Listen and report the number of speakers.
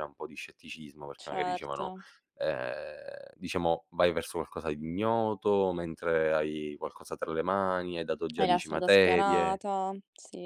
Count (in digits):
2